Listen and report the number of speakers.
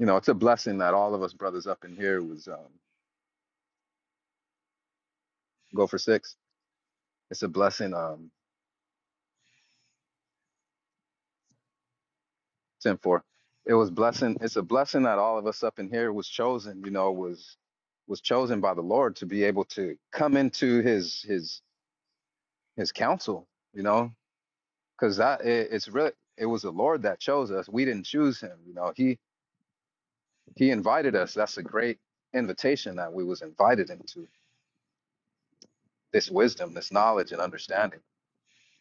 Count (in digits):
1